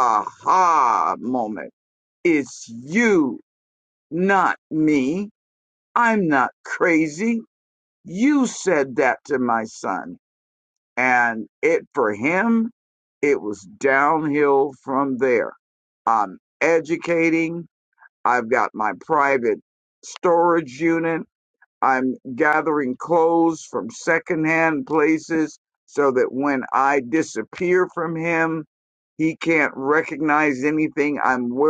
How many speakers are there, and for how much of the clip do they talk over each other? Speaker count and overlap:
1, no overlap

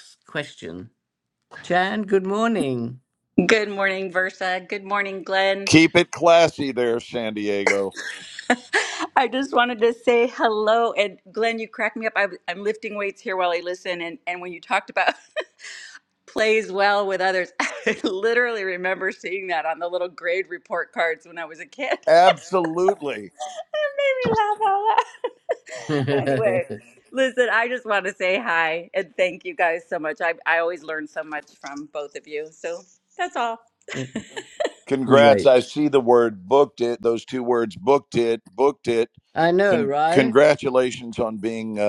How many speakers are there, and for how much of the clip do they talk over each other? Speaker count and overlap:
3, about 2%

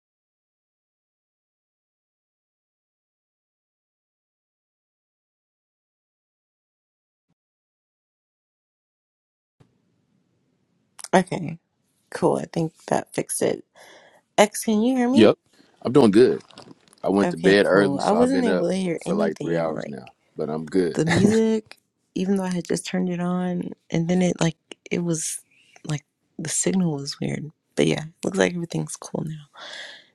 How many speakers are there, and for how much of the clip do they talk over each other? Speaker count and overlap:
2, about 9%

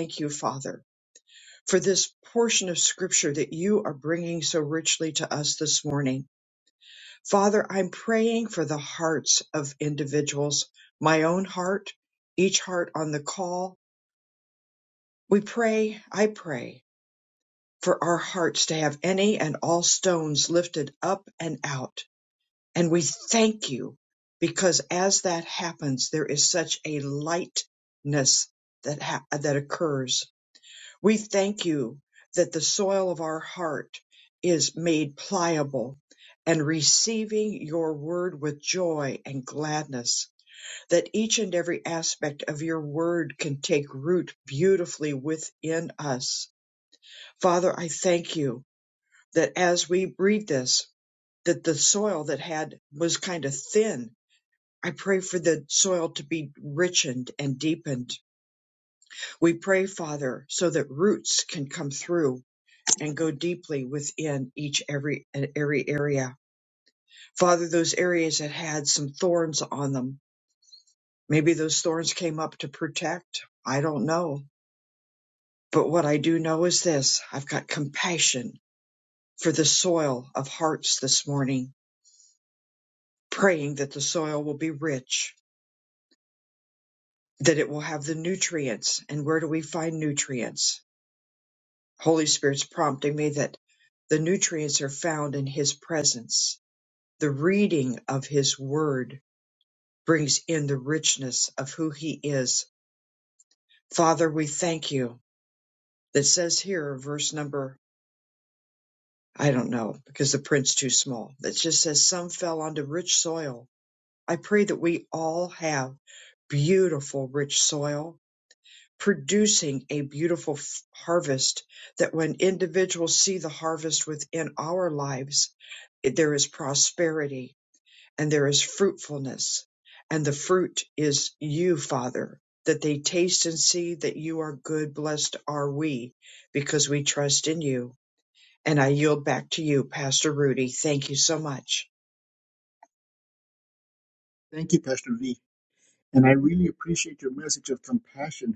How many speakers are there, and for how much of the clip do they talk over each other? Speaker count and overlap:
2, no overlap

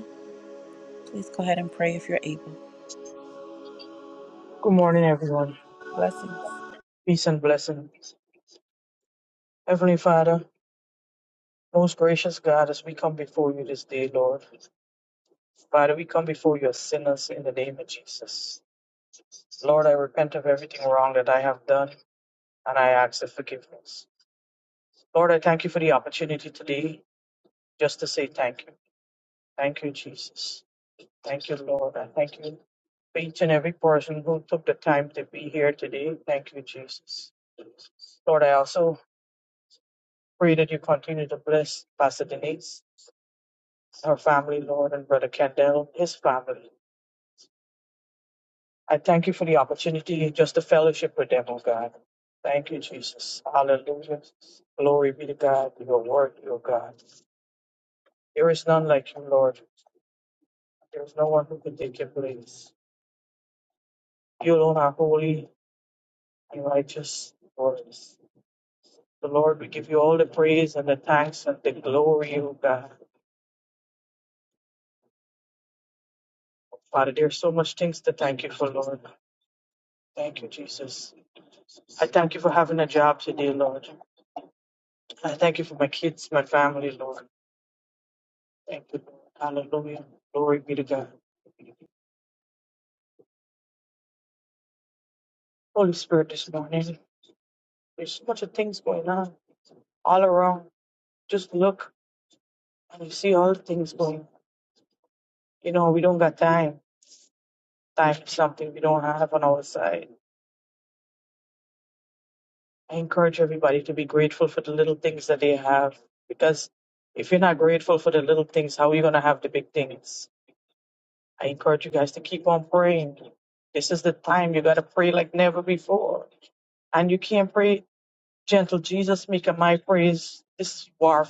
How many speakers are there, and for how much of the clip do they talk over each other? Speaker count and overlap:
2, no overlap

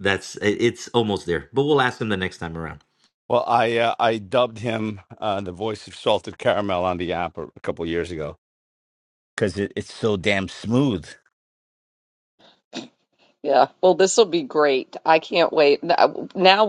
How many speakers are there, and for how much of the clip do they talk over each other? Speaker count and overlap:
3, no overlap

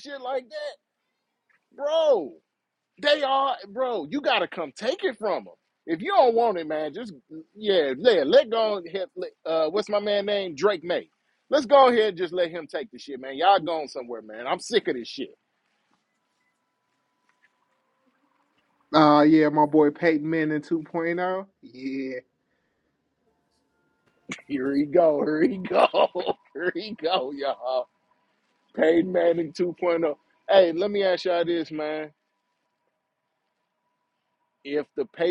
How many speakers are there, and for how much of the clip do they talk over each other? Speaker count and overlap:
2, no overlap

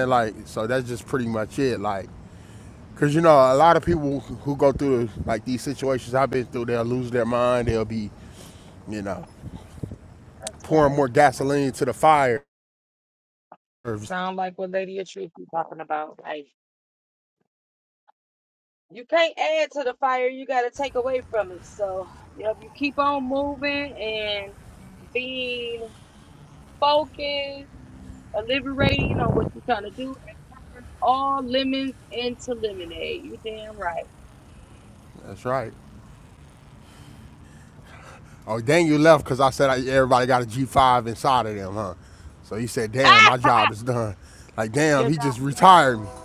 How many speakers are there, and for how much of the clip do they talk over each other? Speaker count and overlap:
2, about 1%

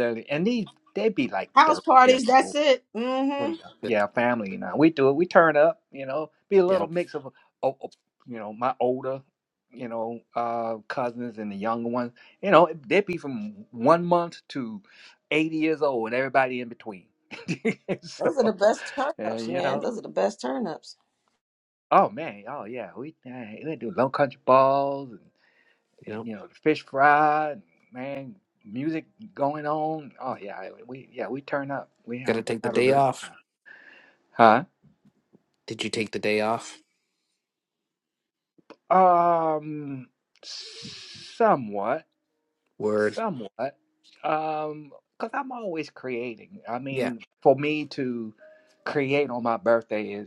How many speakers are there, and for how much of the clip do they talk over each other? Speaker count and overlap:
3, about 8%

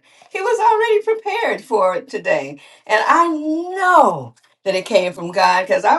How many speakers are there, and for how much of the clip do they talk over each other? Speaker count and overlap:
1, no overlap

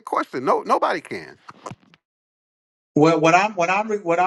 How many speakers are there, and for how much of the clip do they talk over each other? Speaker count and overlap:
2, no overlap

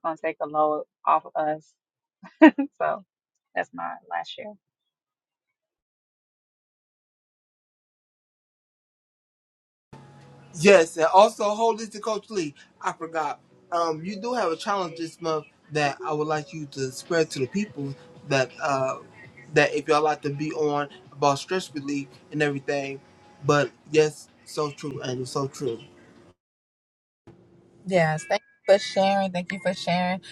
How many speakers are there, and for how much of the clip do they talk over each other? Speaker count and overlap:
3, no overlap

